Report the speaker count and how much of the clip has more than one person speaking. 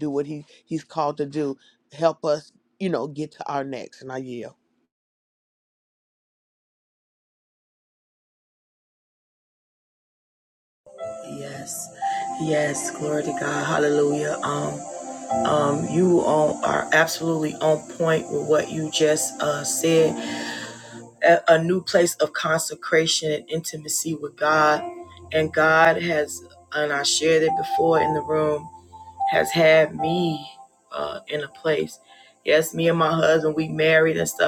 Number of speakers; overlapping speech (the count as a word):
two, no overlap